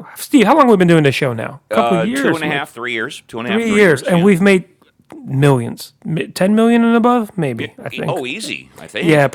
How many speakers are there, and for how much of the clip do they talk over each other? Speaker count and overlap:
2, about 28%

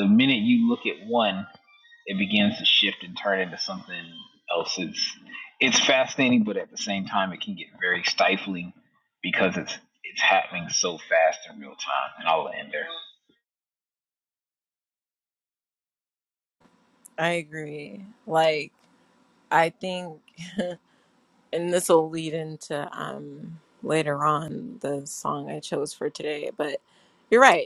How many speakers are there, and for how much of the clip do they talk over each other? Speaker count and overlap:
2, no overlap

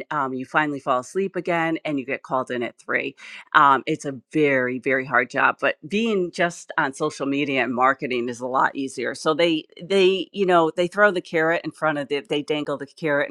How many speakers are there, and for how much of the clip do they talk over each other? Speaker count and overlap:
1, no overlap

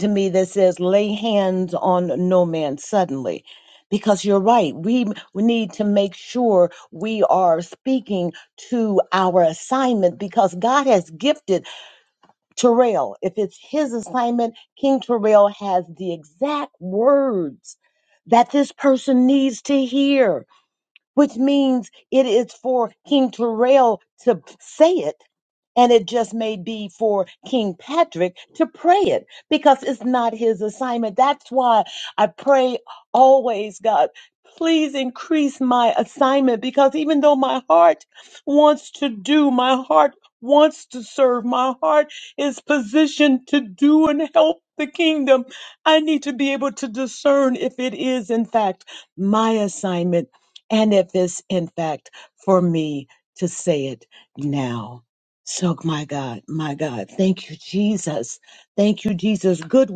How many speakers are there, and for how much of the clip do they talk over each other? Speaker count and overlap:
1, no overlap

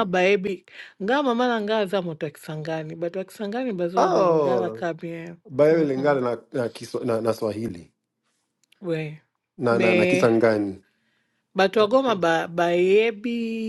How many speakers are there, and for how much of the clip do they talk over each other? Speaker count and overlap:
2, about 14%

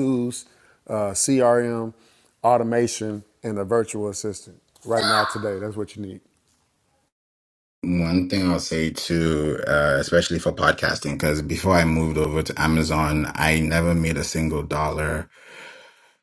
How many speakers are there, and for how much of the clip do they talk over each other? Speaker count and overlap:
2, no overlap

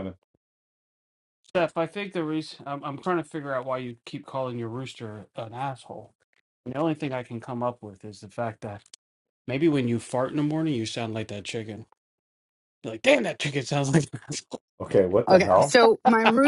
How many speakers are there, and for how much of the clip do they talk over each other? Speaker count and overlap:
3, about 3%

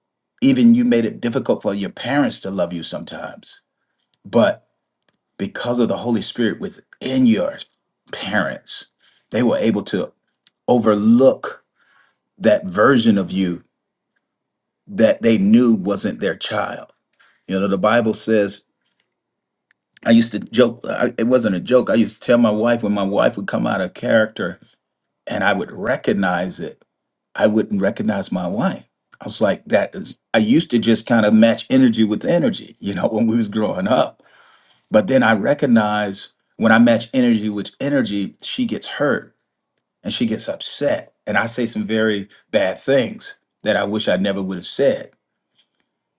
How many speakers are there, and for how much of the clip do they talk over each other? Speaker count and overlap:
1, no overlap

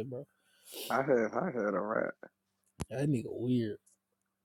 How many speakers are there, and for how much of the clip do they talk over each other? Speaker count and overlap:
2, no overlap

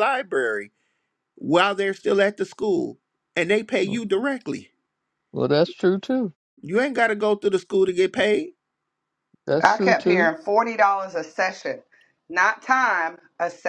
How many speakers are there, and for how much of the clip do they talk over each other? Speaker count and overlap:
3, about 6%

